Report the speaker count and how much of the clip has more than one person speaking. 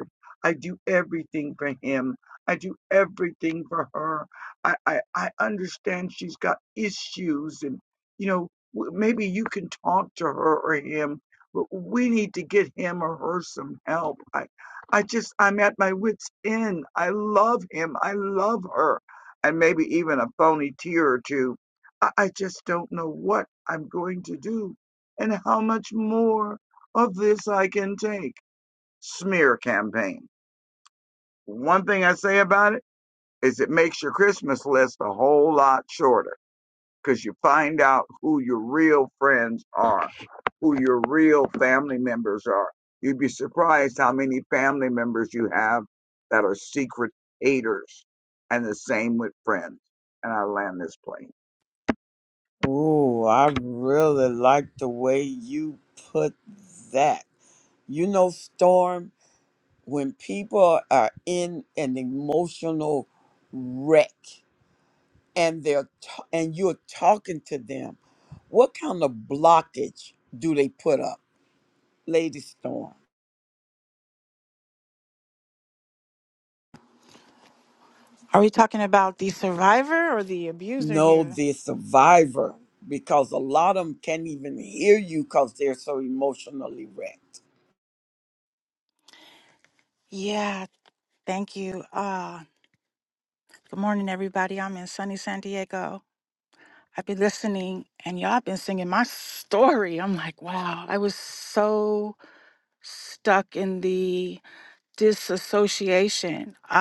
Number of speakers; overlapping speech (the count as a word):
three, about 1%